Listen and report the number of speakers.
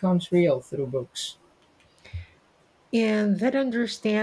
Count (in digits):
2